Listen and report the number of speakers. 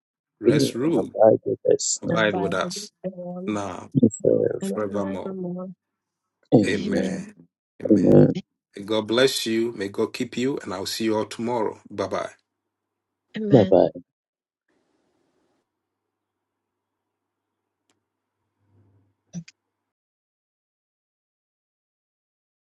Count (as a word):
three